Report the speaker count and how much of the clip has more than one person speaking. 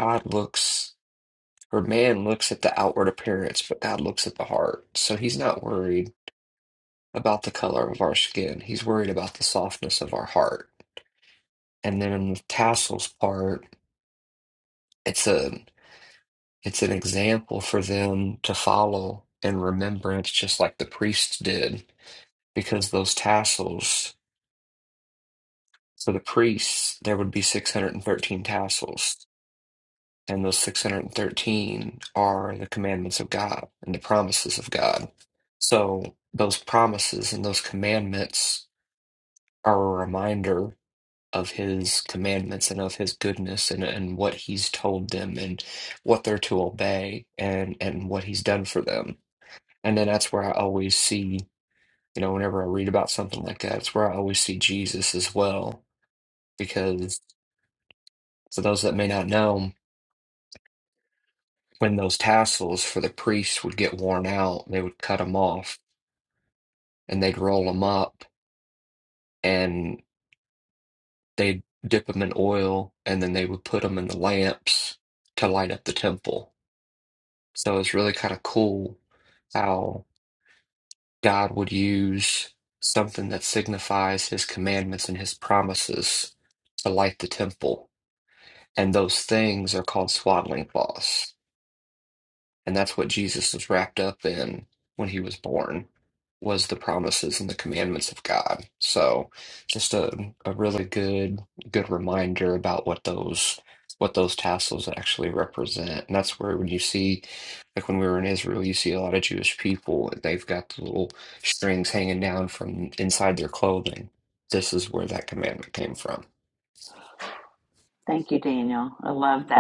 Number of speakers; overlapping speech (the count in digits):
2, no overlap